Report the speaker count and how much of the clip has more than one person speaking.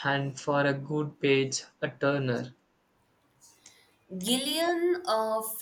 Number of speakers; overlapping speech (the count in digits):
2, no overlap